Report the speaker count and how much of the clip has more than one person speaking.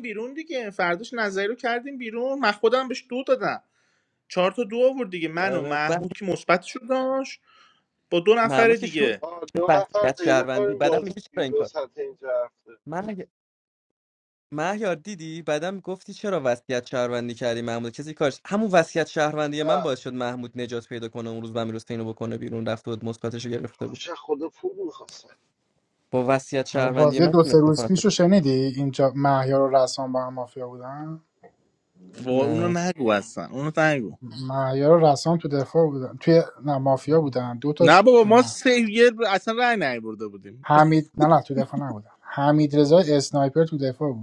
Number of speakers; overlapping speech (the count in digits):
4, about 13%